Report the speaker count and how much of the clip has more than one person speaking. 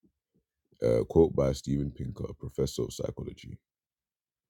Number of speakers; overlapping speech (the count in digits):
1, no overlap